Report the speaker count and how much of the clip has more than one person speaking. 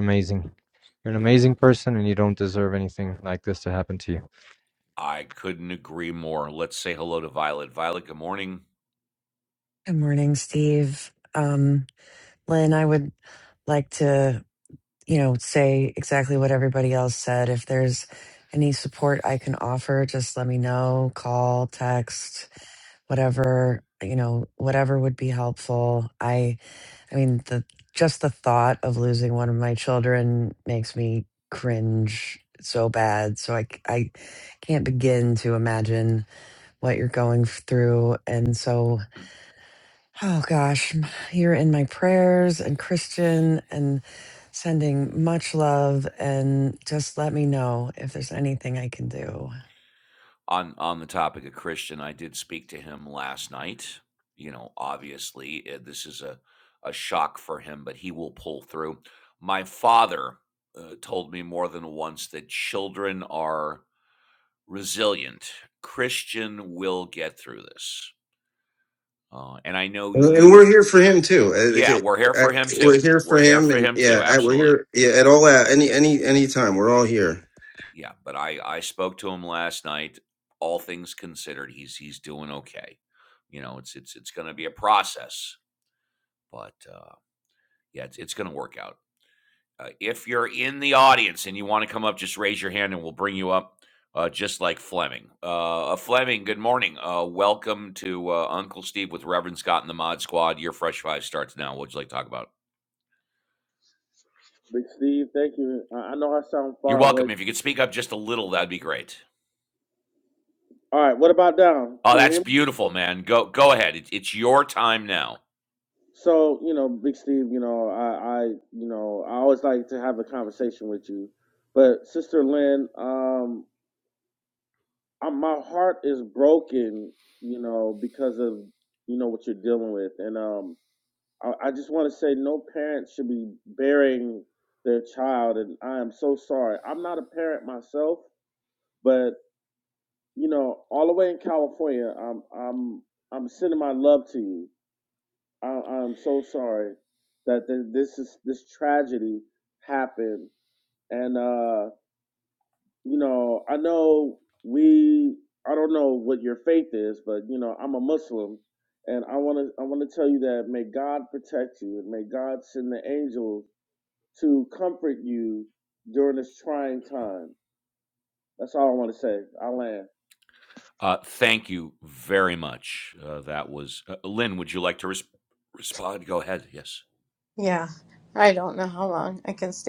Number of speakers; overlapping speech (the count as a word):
six, about 2%